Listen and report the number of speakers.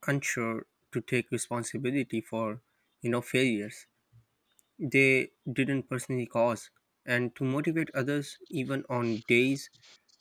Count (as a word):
one